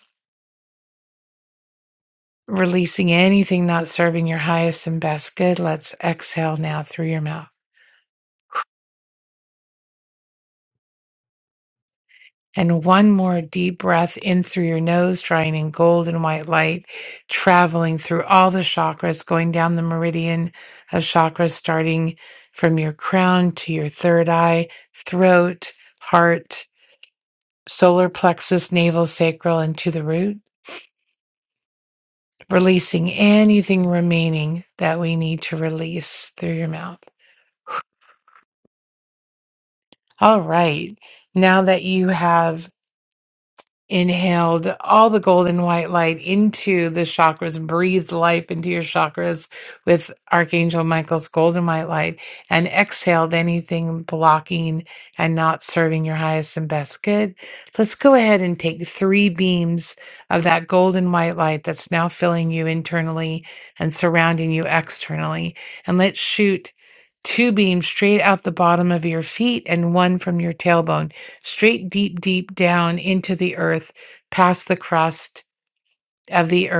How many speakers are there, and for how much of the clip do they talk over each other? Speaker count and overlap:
1, no overlap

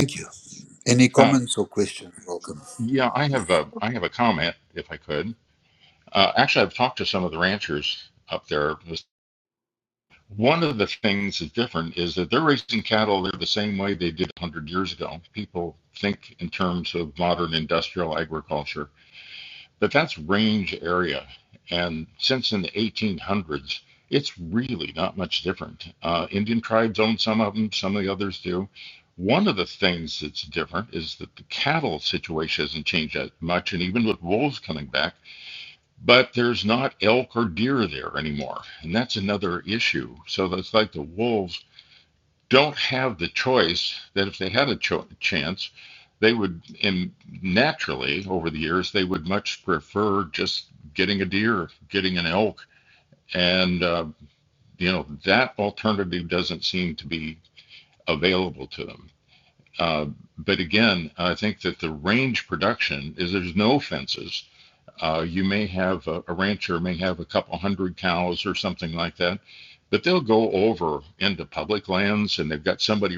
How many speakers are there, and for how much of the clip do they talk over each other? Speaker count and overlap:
2, under 1%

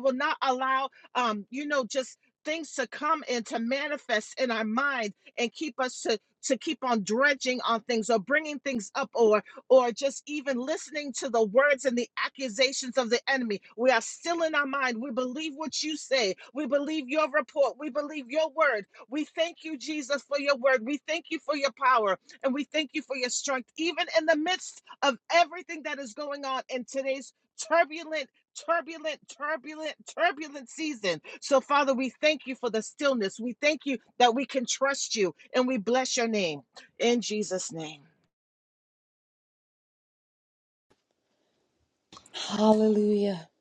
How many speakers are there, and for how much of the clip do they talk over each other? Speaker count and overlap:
2, no overlap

